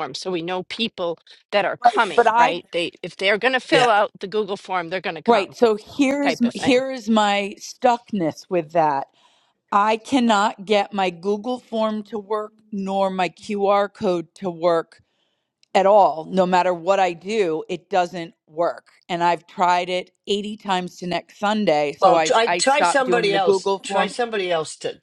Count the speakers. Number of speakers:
3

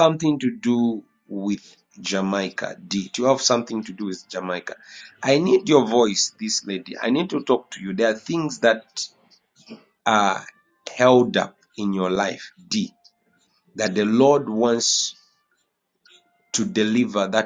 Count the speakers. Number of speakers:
1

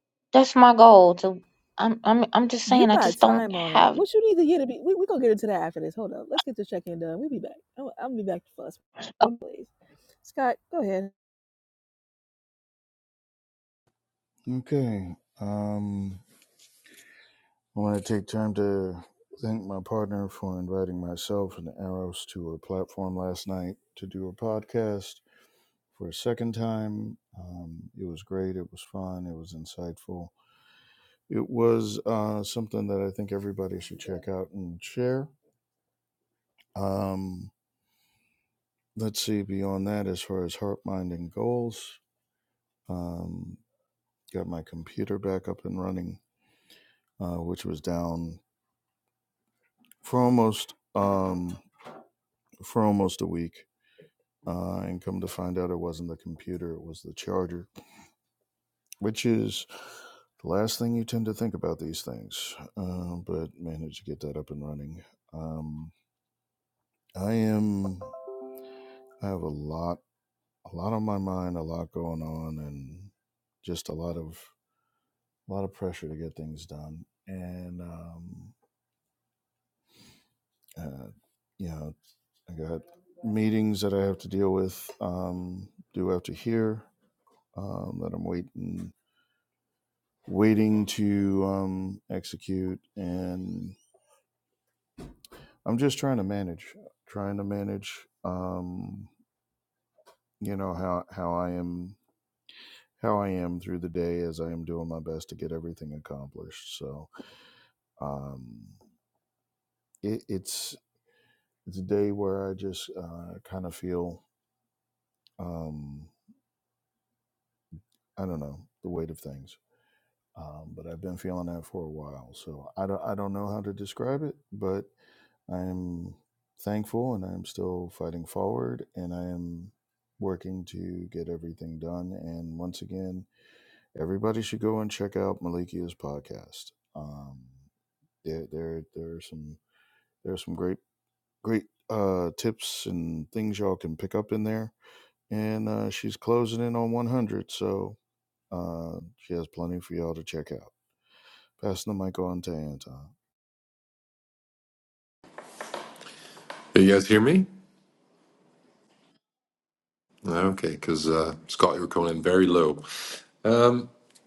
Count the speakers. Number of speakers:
4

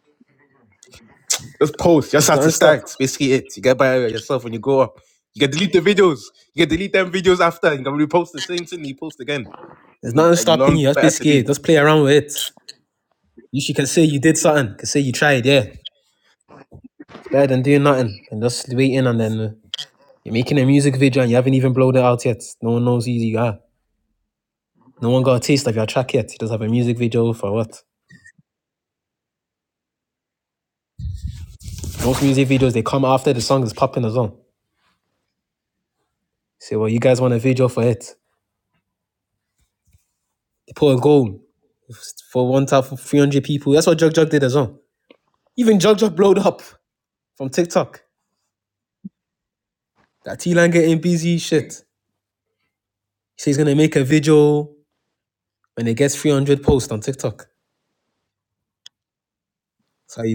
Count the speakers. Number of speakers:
2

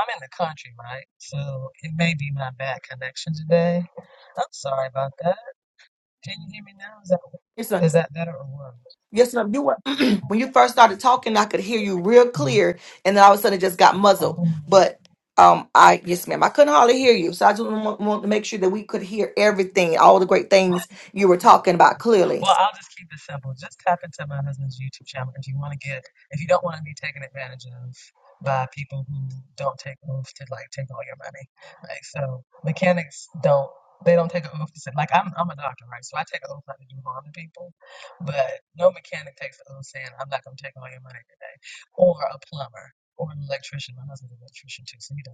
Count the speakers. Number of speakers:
2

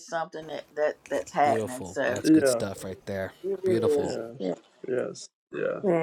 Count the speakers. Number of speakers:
3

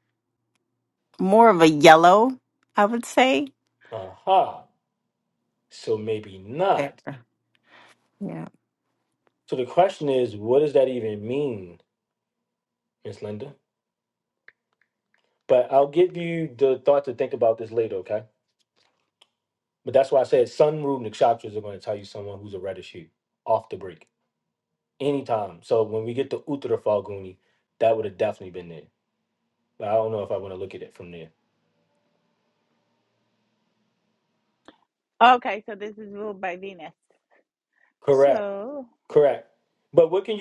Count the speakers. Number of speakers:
3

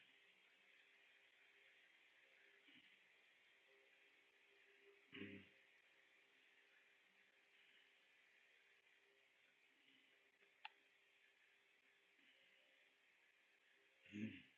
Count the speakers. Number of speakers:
0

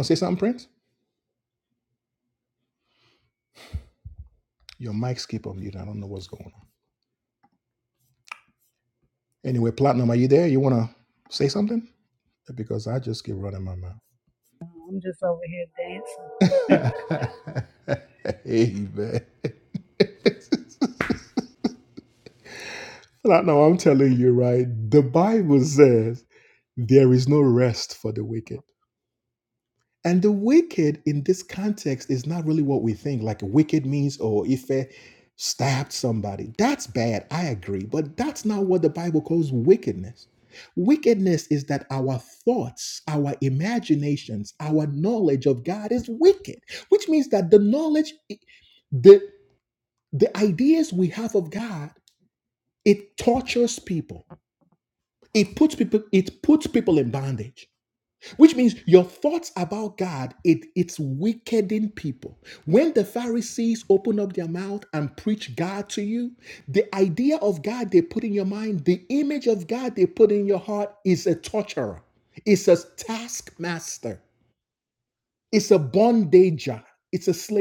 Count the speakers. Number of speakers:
2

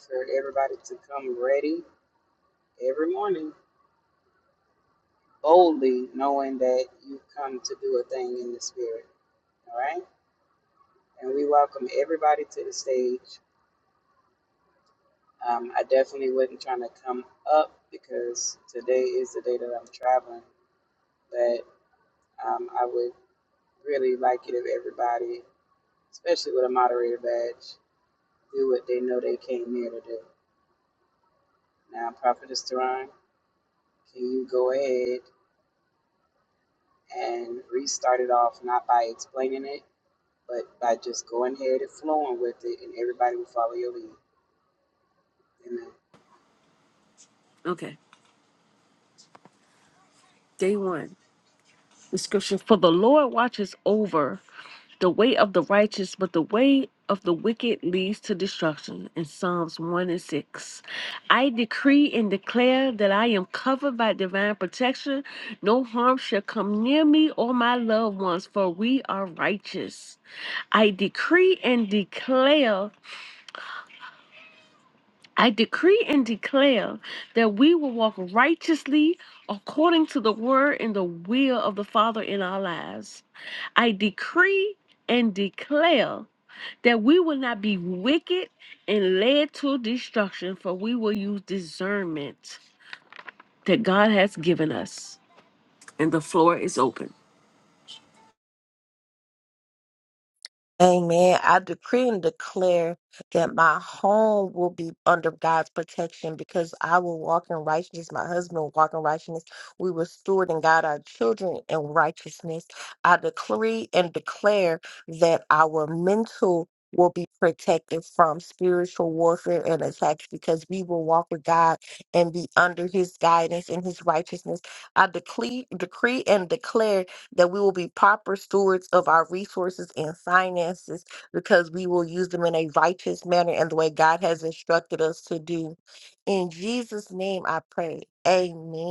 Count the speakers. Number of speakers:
3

